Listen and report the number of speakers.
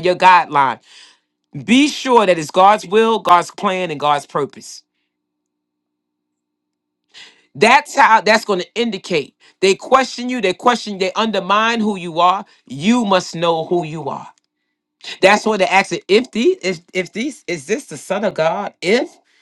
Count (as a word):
one